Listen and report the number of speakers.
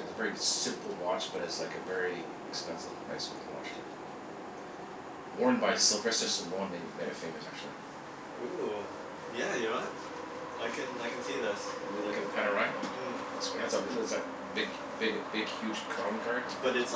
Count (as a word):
two